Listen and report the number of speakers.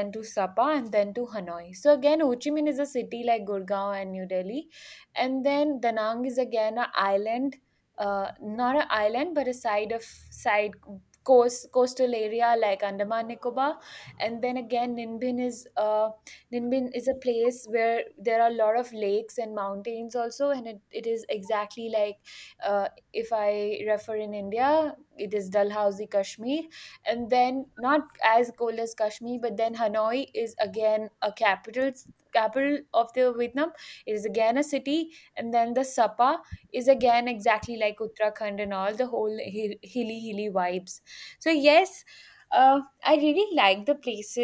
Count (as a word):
one